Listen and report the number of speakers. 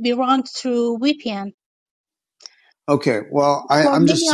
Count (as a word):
two